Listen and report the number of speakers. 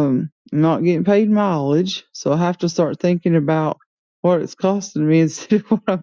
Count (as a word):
one